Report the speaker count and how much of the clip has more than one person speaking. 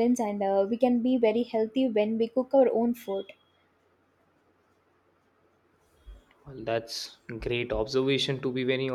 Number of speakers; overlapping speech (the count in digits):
2, no overlap